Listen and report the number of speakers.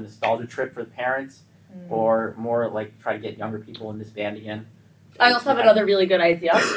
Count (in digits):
2